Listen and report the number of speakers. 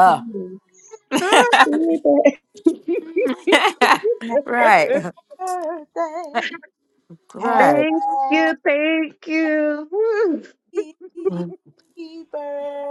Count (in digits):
4